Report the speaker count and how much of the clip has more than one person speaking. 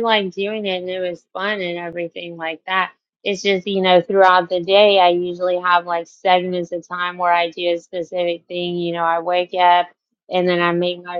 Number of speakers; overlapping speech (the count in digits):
1, no overlap